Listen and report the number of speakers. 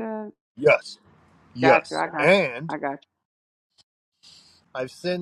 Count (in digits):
2